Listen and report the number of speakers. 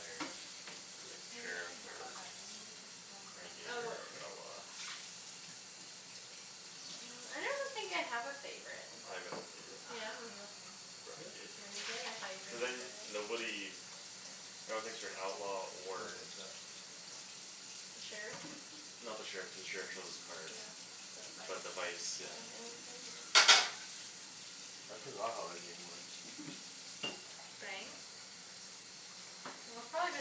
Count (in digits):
4